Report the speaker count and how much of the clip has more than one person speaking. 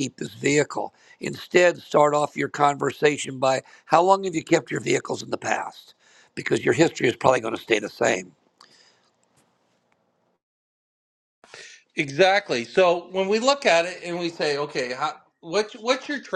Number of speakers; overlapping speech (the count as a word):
two, no overlap